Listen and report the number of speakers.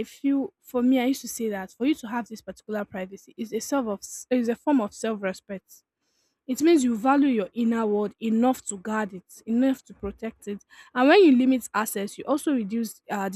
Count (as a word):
one